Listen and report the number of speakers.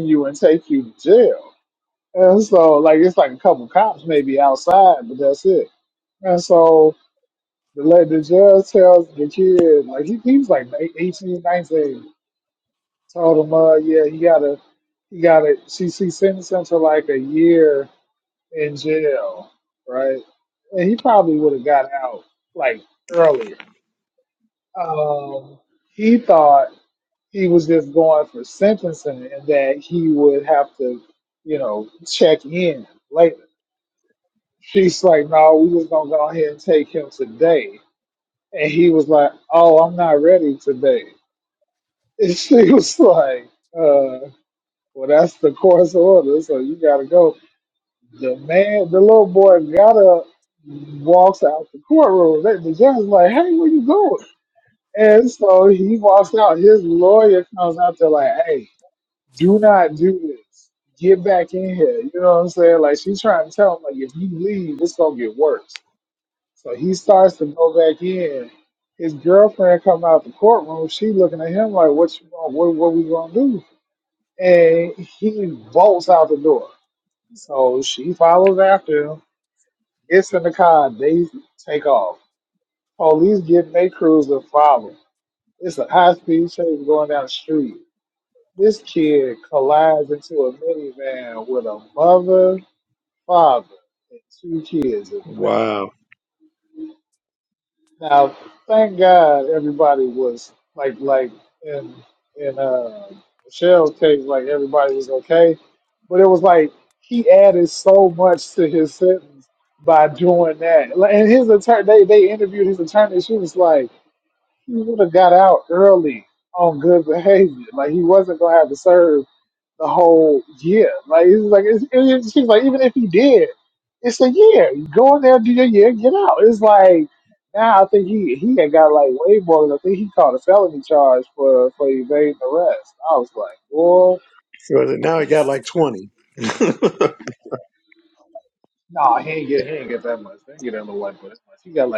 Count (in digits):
2